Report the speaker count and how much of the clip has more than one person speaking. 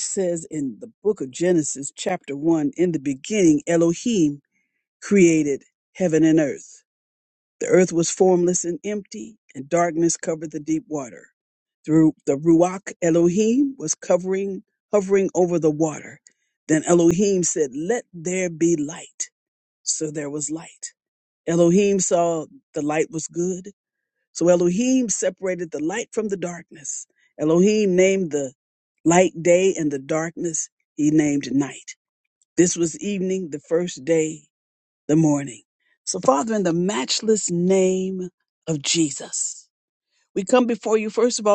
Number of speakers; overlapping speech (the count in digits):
1, no overlap